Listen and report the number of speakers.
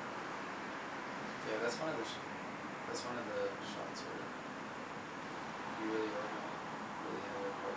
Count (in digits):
1